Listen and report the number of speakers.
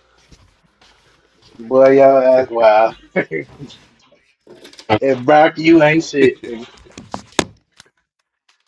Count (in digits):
1